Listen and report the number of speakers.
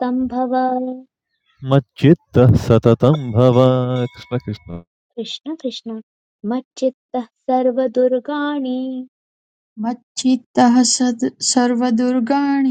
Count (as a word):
three